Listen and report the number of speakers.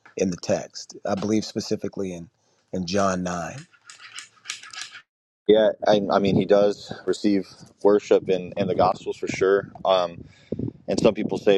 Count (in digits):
2